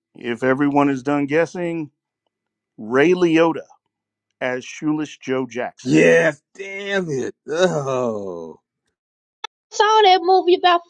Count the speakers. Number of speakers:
3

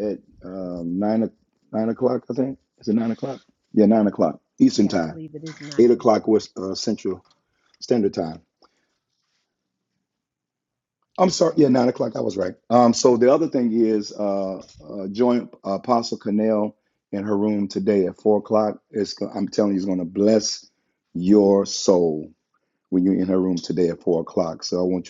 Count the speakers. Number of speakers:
2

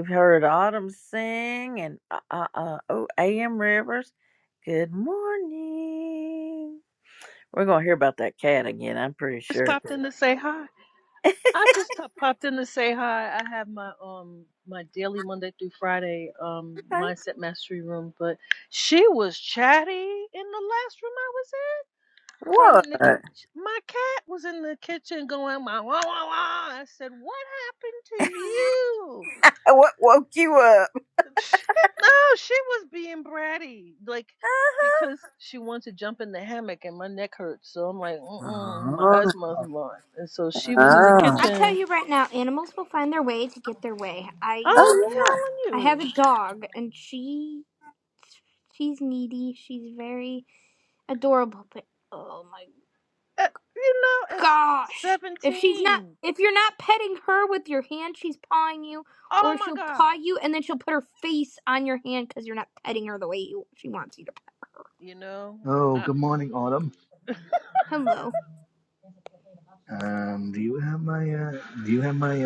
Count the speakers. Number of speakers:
4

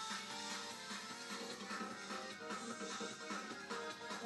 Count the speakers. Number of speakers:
0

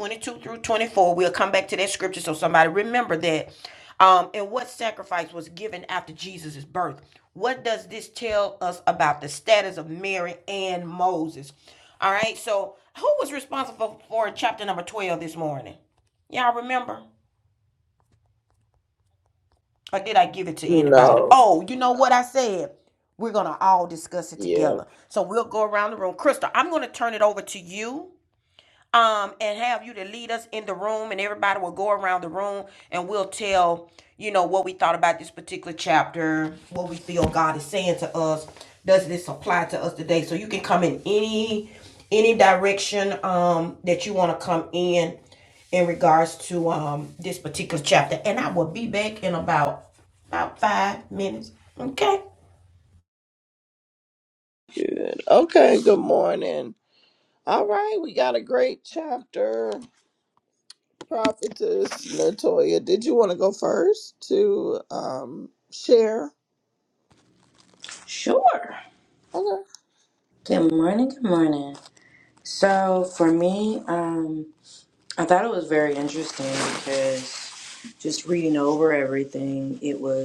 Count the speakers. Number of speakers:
3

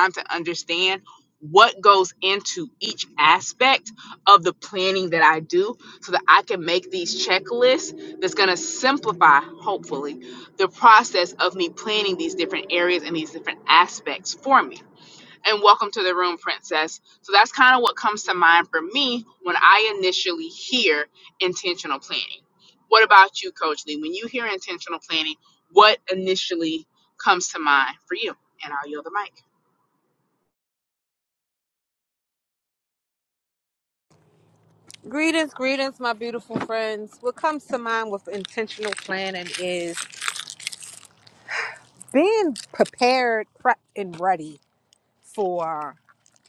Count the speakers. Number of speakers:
2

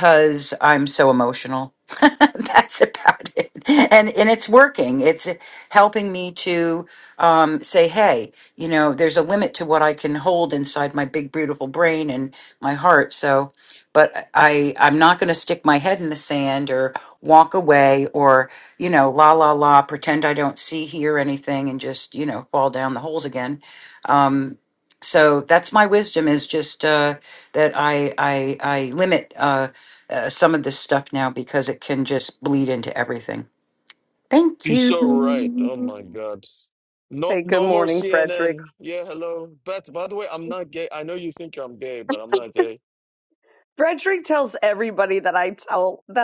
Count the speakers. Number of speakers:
3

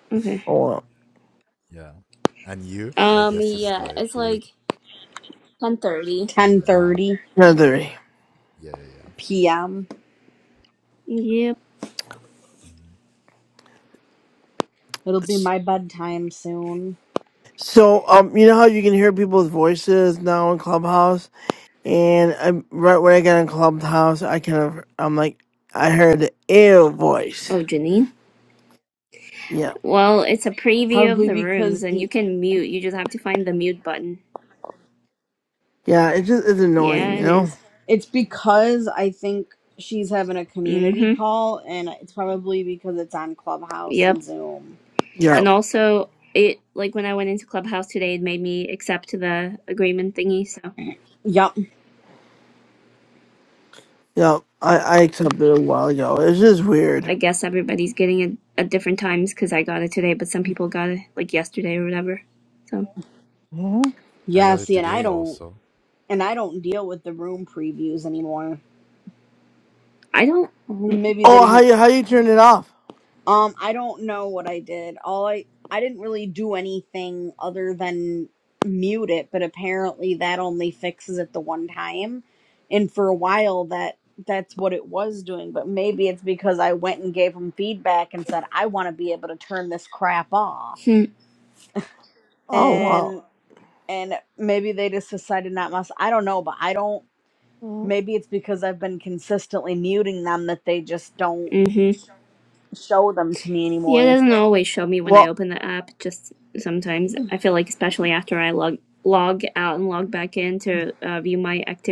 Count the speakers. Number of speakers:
4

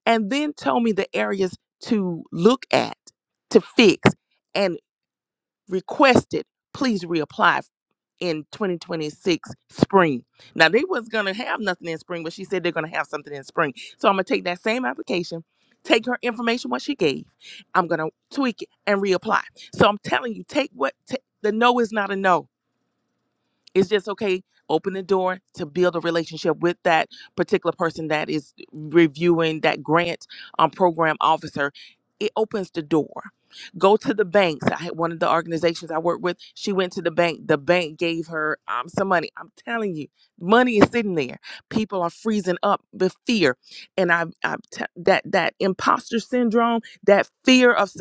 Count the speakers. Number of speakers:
1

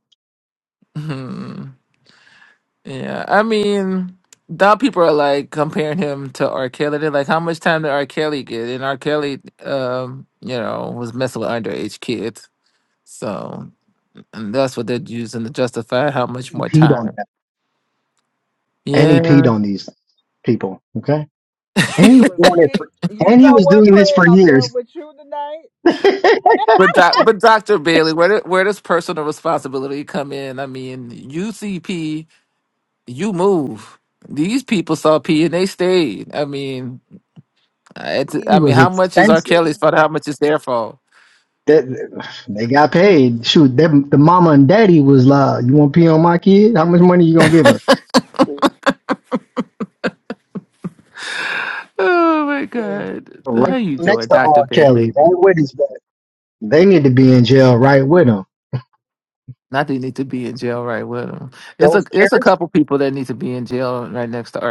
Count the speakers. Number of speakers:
3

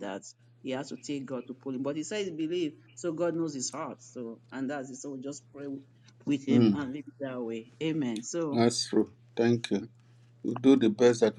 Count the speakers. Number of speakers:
2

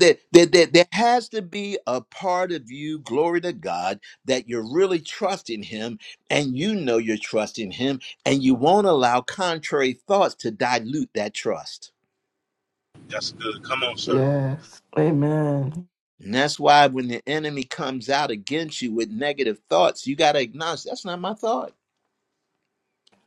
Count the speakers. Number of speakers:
3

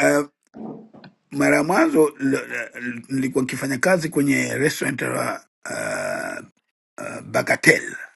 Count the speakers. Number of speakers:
1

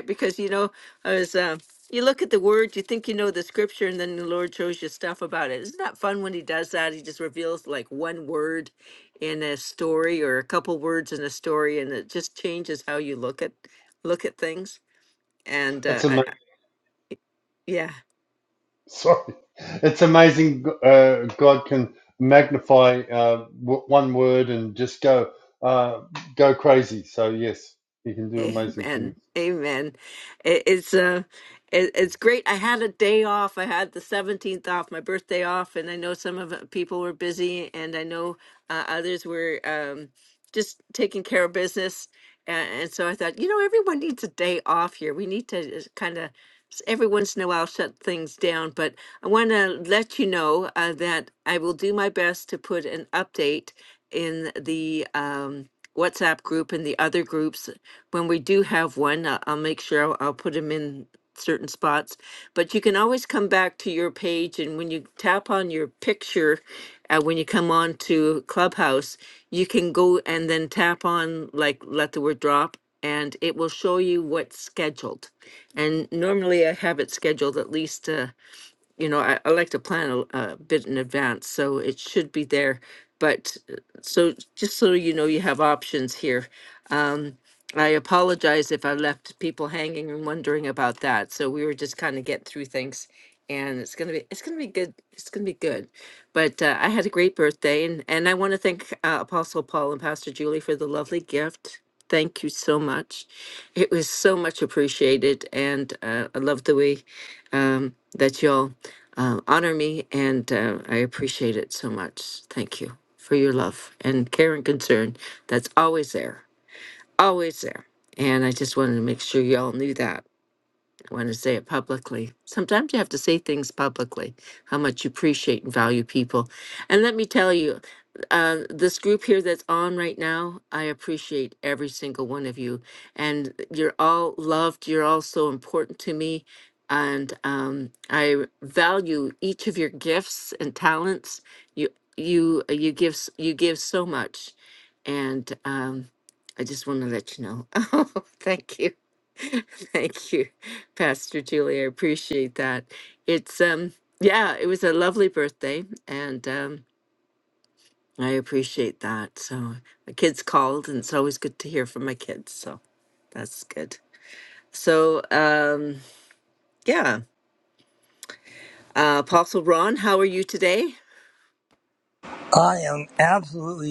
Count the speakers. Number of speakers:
3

